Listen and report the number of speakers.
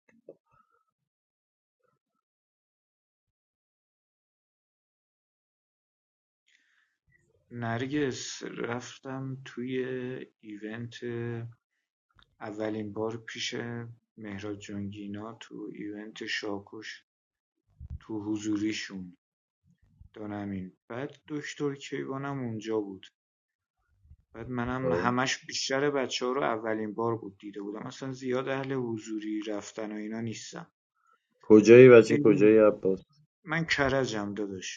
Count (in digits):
2